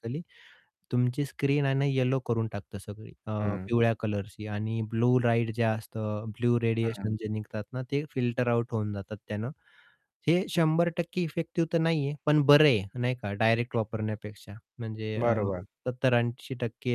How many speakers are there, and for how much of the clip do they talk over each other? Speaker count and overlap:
2, about 5%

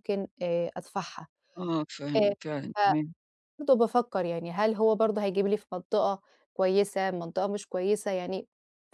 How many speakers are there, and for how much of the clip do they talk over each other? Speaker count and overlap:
2, about 4%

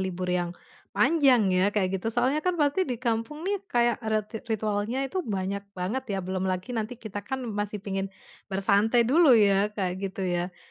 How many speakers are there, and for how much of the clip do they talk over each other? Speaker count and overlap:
1, no overlap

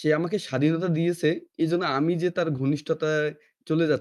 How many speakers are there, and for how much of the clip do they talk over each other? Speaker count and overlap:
1, no overlap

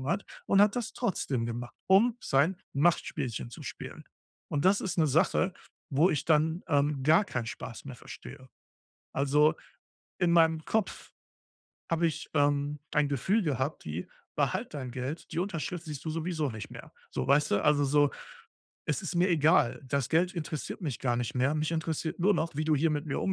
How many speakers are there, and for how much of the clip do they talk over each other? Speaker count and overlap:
1, no overlap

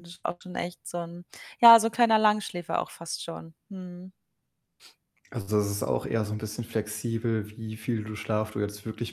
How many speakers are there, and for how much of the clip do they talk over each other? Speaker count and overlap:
2, no overlap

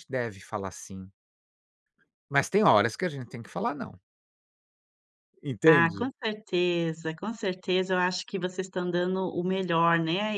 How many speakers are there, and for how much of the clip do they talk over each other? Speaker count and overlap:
2, about 4%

